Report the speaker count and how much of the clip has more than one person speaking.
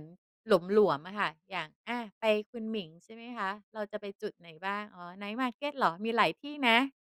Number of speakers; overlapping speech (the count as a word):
one, no overlap